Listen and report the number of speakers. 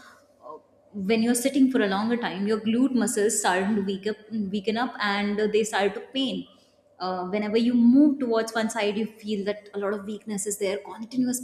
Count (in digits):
1